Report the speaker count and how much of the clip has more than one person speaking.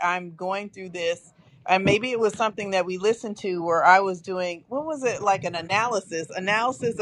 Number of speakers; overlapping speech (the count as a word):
one, no overlap